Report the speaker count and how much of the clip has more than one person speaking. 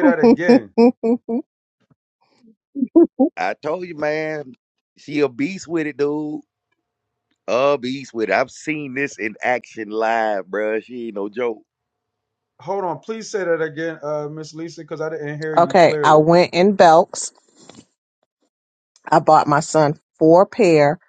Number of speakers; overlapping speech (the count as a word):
three, about 3%